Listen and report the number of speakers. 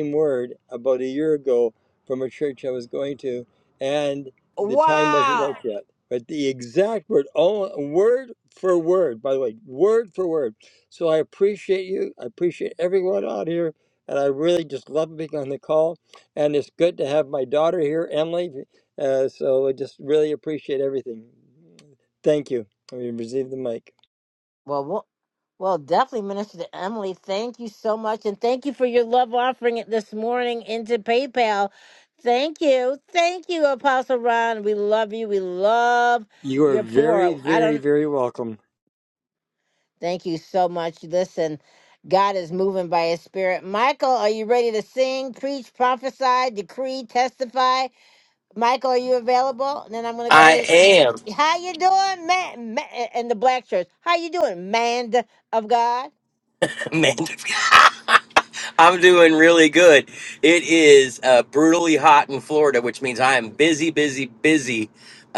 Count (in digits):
3